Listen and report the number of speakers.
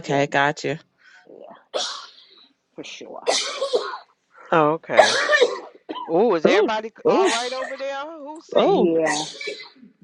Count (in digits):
3